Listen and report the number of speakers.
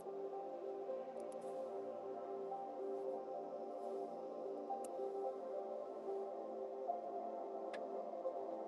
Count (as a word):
zero